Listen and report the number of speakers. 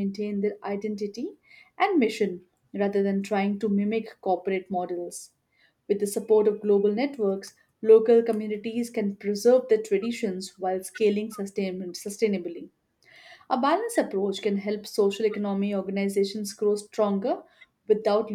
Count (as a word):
one